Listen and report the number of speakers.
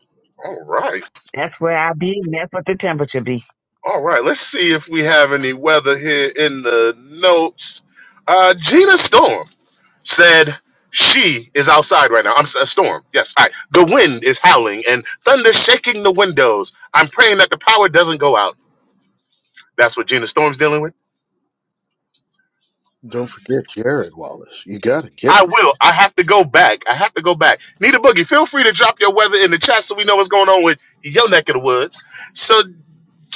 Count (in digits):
3